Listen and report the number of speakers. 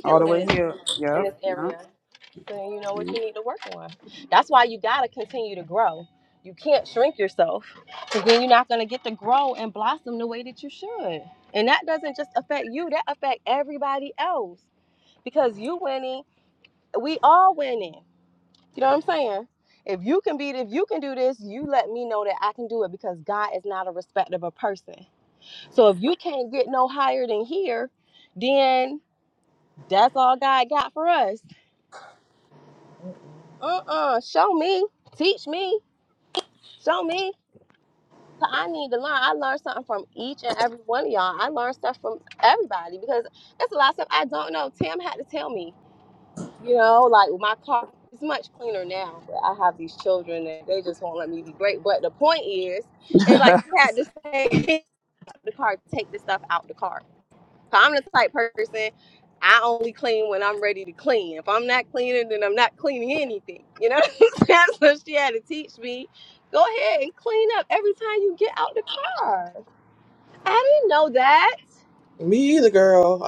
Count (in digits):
3